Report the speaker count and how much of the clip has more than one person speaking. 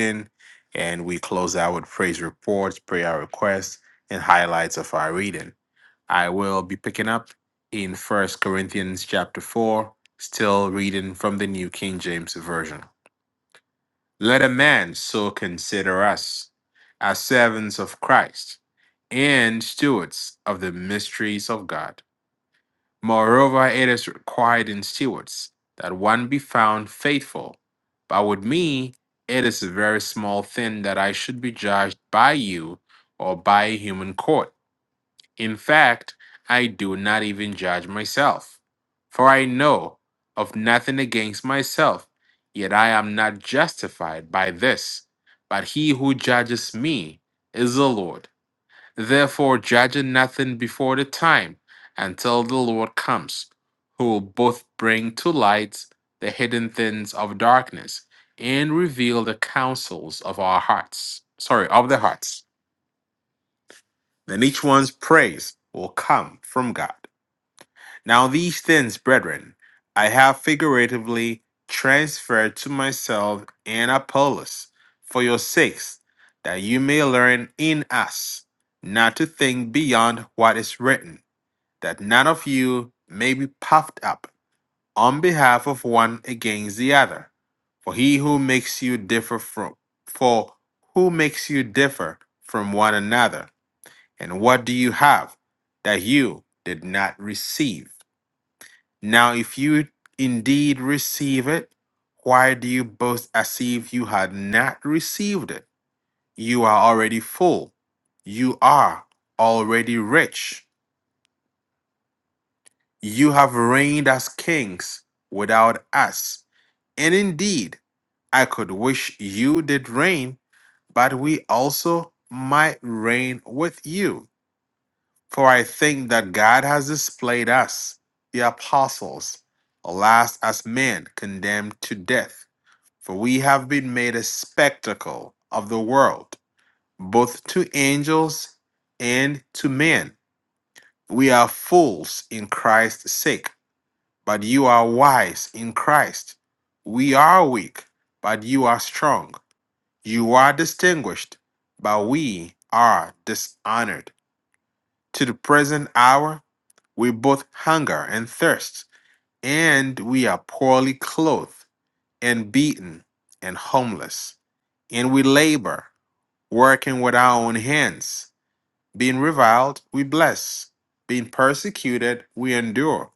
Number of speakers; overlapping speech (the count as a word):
one, no overlap